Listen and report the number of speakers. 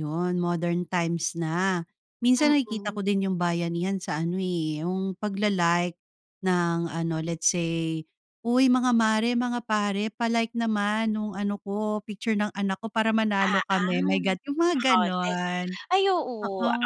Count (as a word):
two